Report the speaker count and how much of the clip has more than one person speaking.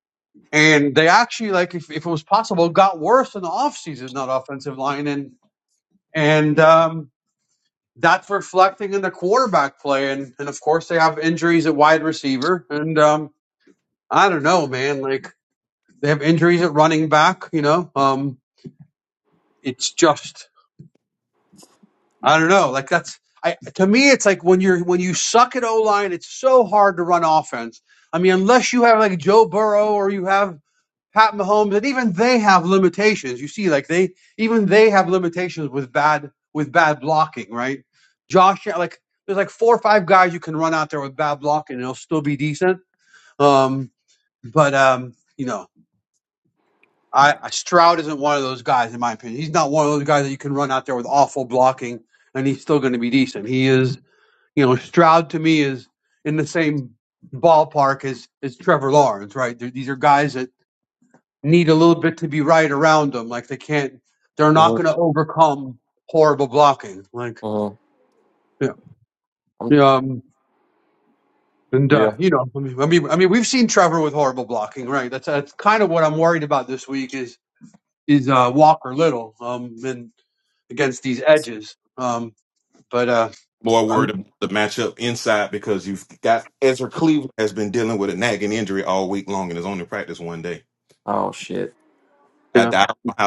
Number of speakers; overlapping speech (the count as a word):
three, about 1%